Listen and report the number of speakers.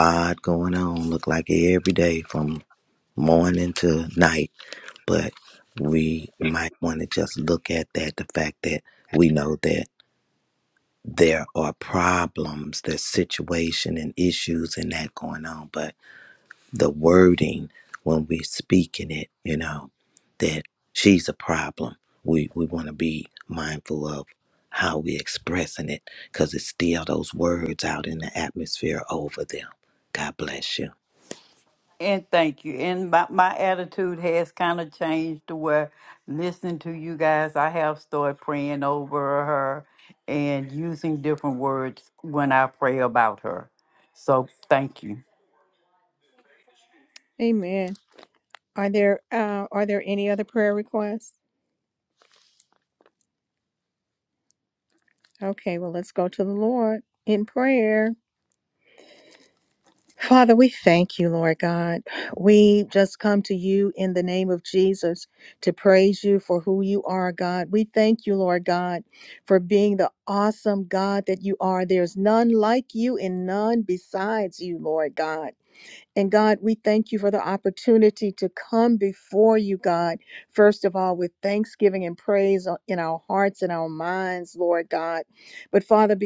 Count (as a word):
three